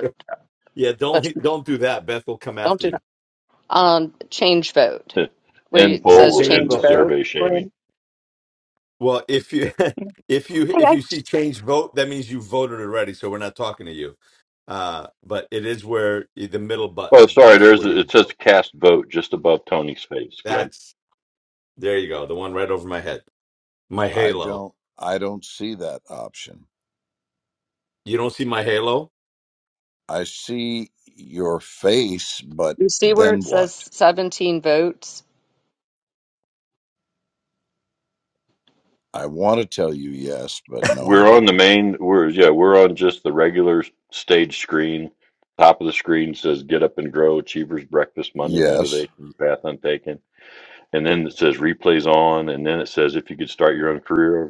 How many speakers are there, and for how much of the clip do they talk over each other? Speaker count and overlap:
4, about 12%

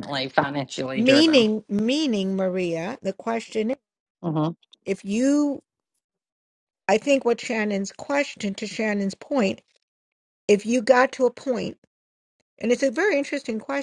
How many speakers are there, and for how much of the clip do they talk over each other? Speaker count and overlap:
2, about 3%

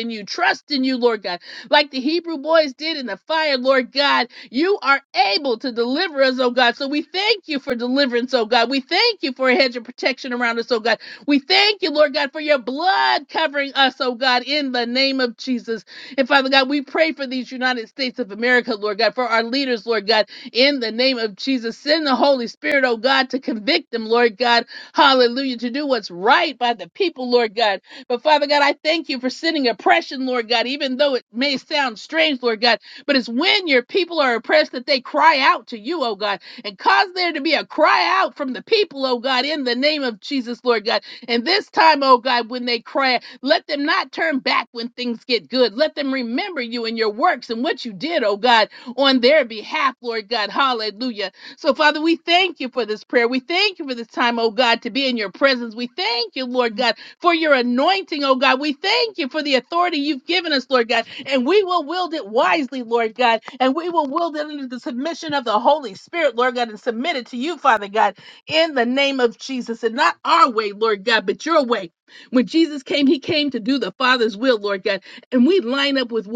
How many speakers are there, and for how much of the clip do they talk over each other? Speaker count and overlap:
1, no overlap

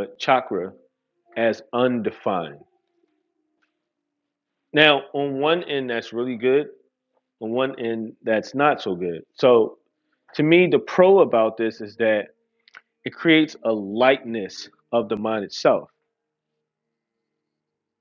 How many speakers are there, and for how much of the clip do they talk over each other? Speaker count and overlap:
1, no overlap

